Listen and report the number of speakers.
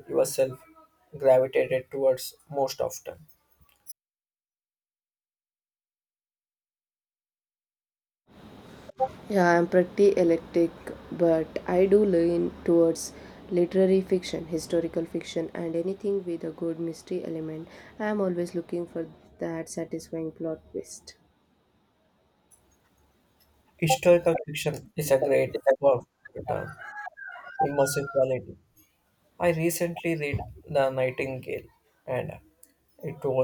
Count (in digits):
2